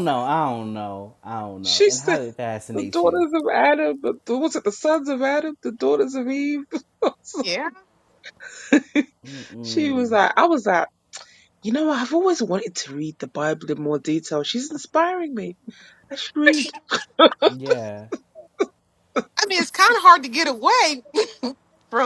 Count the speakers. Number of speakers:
3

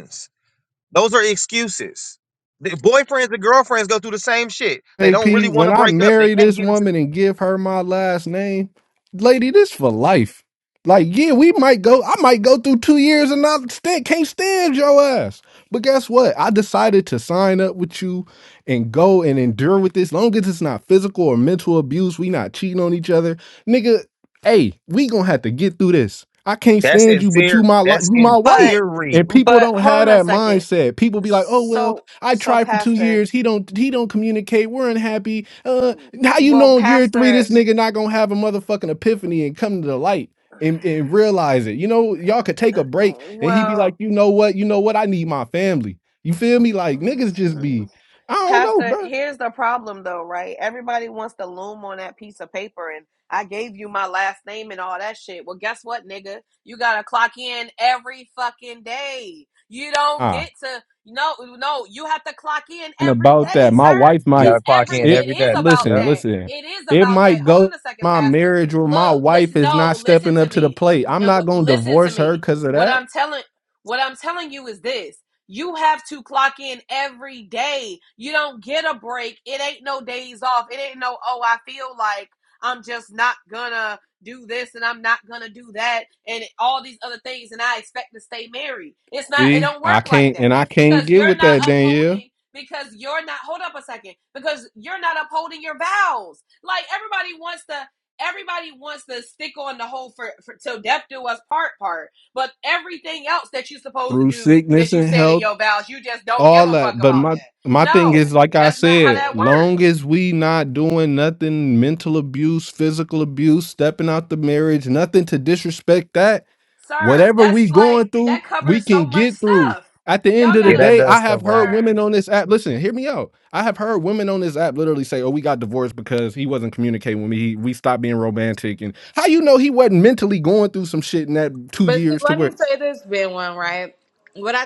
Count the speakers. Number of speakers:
4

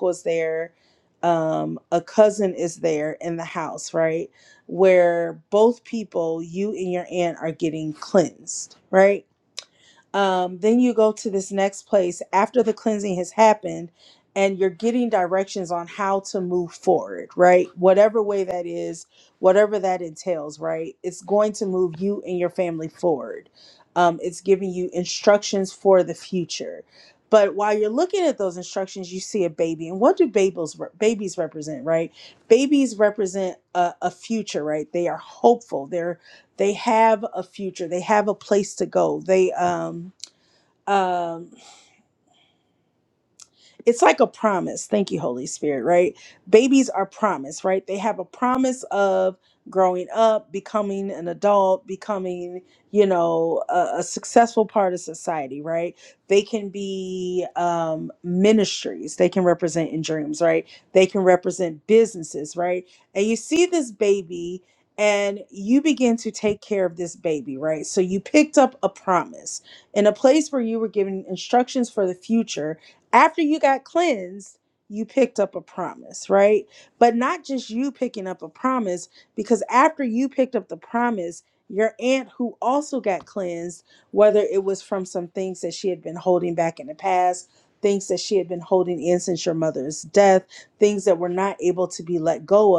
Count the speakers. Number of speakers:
1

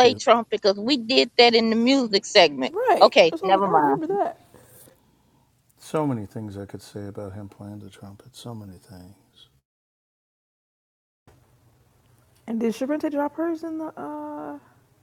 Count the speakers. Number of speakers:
3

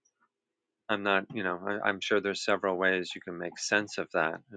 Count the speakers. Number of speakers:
1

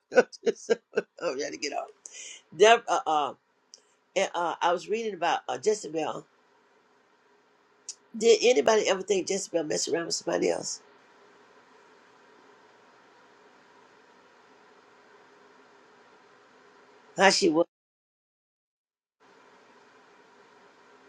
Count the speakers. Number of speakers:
1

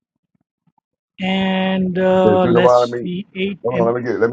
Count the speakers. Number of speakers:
2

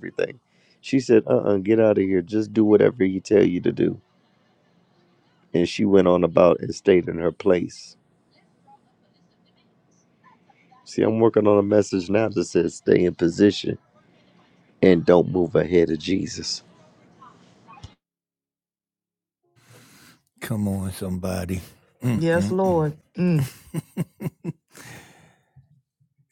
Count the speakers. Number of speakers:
3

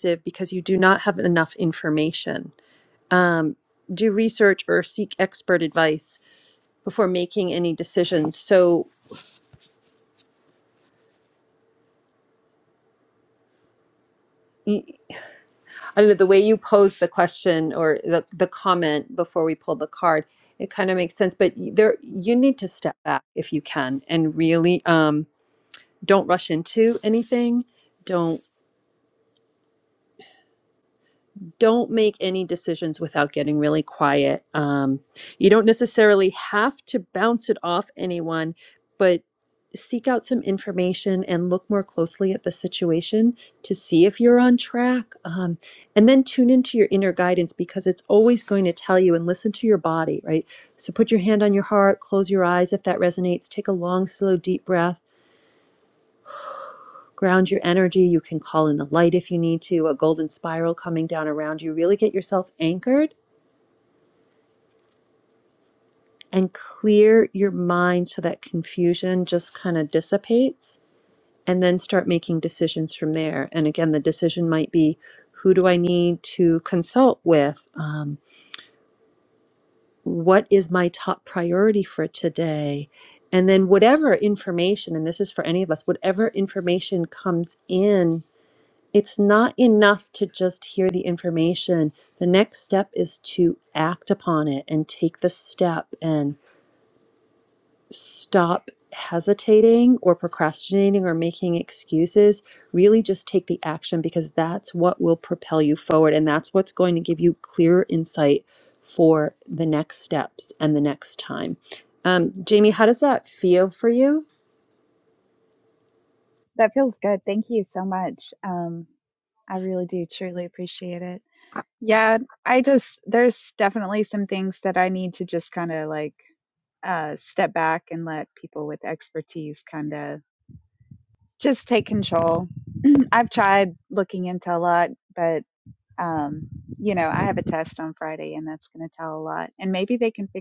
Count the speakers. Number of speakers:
2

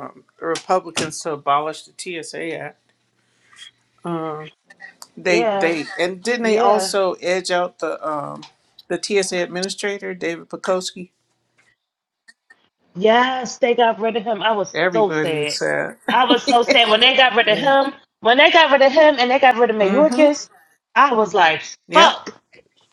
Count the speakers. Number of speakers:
2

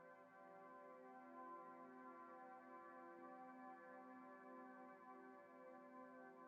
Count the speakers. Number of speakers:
0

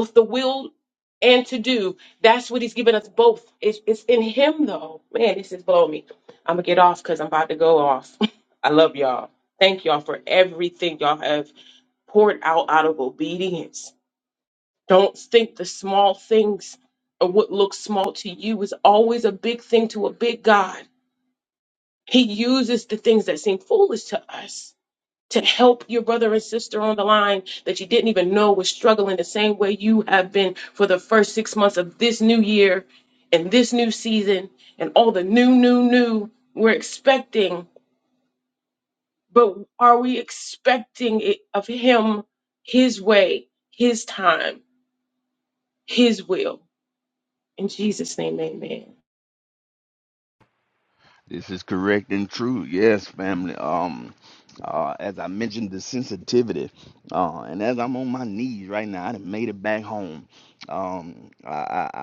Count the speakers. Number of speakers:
2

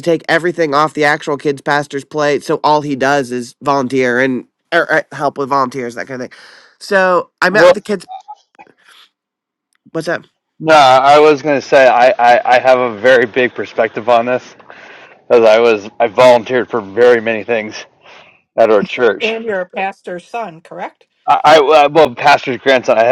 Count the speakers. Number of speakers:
3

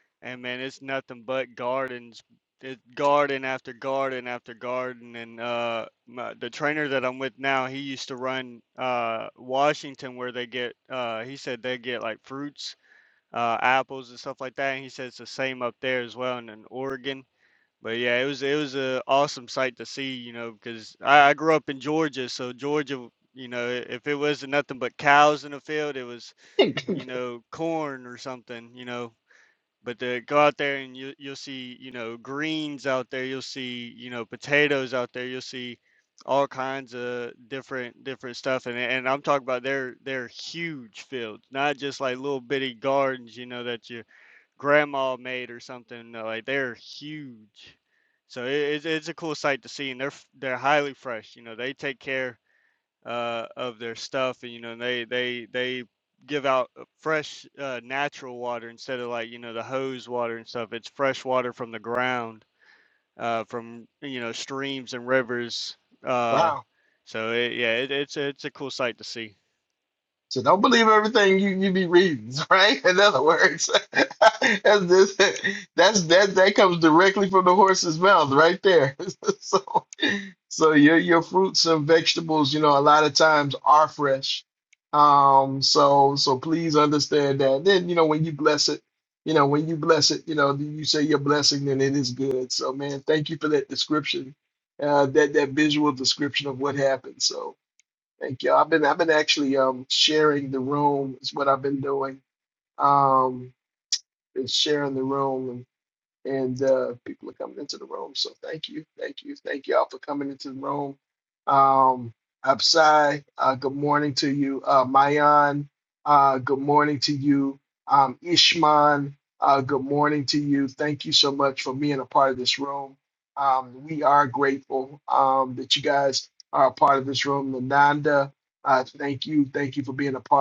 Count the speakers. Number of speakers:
2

